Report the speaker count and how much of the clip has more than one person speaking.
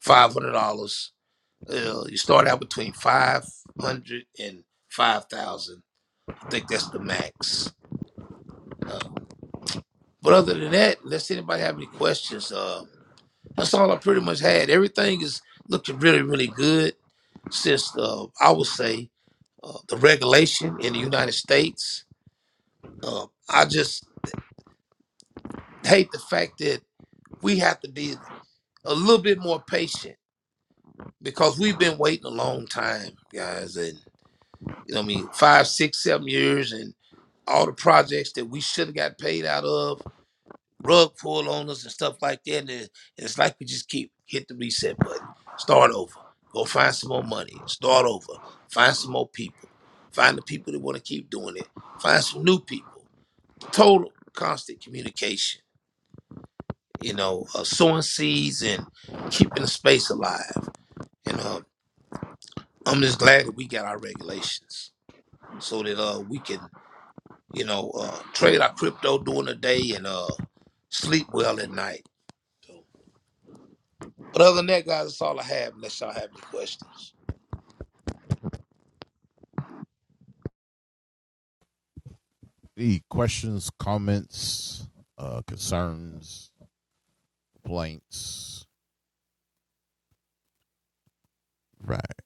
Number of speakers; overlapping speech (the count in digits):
2, no overlap